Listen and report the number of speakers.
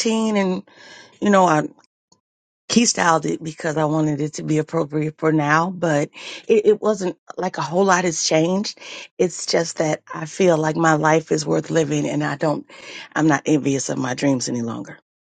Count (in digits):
1